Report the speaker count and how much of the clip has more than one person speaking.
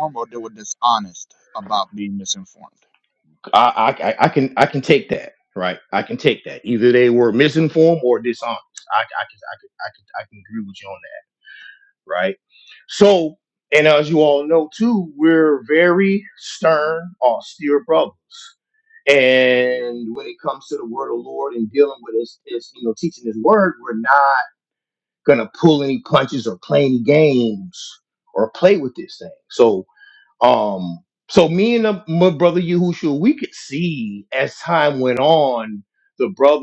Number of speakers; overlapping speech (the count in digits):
2, no overlap